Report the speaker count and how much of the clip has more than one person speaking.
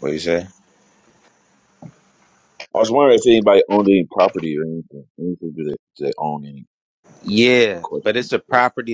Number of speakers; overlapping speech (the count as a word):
two, about 3%